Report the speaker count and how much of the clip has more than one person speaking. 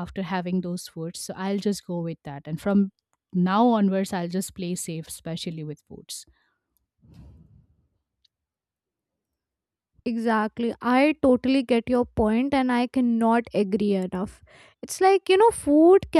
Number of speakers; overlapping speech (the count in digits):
2, no overlap